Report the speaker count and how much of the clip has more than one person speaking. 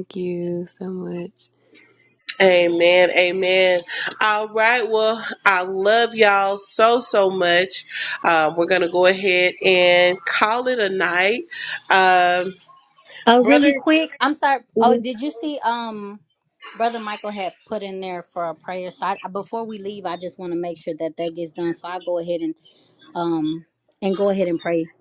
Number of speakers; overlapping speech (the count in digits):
3, about 1%